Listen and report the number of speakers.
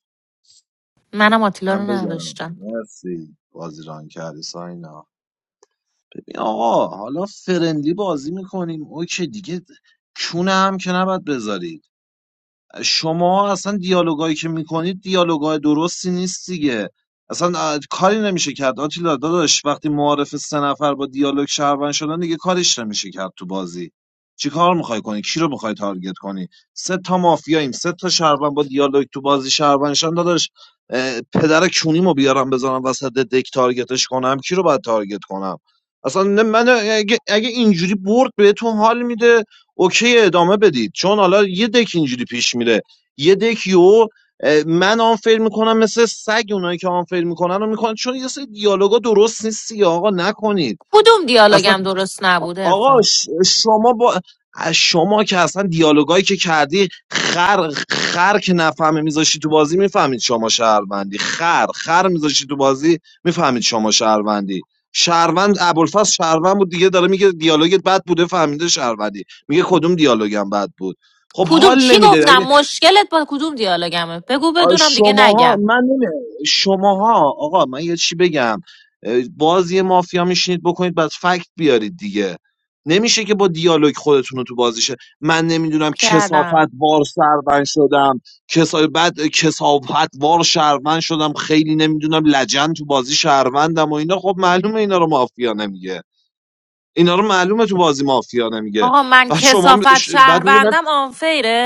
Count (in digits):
2